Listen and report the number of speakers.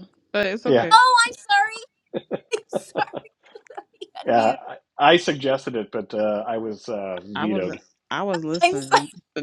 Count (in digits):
3